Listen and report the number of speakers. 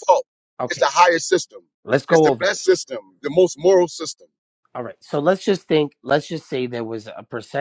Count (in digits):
2